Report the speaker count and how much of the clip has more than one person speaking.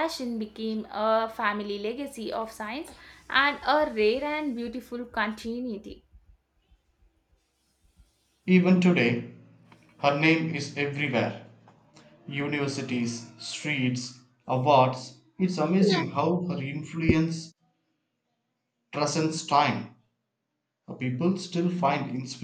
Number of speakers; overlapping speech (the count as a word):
two, no overlap